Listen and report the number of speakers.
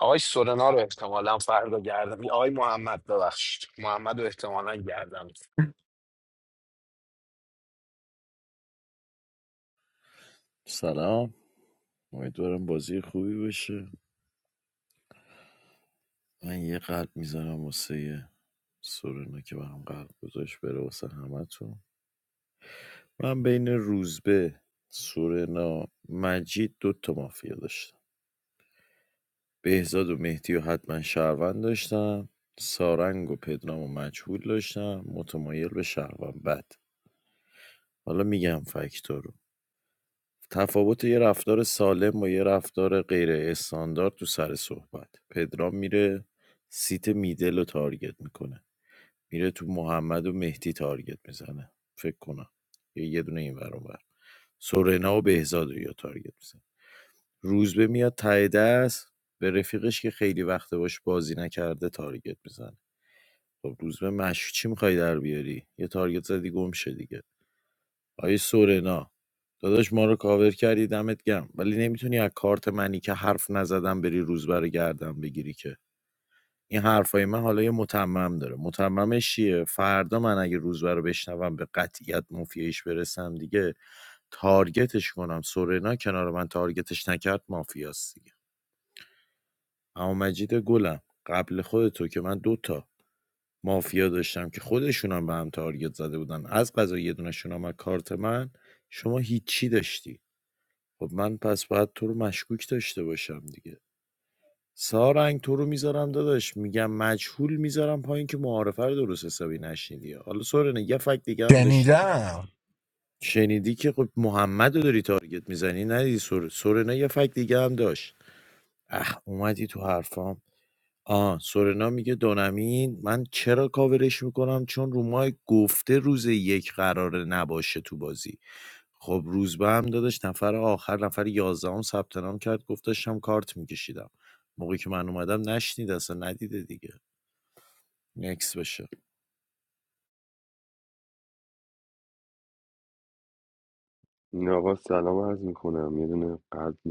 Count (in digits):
3